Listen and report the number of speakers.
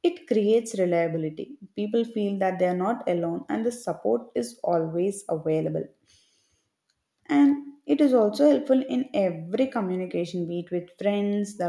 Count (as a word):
one